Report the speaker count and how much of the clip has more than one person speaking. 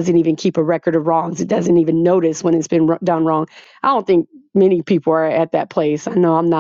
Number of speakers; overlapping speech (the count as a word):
one, no overlap